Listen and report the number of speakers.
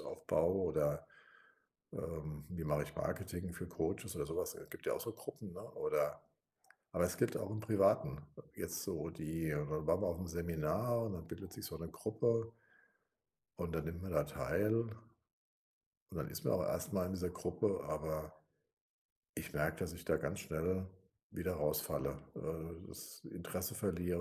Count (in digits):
1